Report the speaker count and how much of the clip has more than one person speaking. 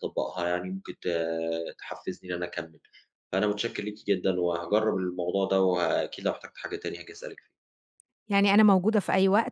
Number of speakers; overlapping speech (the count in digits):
2, no overlap